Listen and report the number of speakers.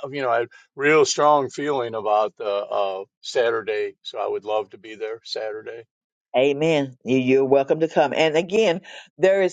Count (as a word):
two